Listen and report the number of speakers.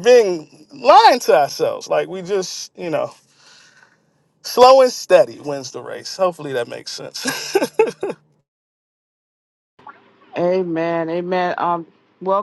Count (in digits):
2